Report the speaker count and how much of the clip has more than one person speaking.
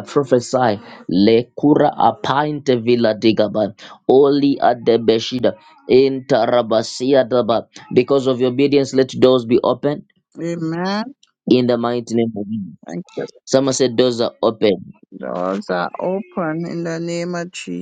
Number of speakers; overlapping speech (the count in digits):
2, no overlap